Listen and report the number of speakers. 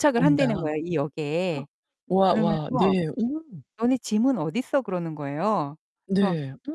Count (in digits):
2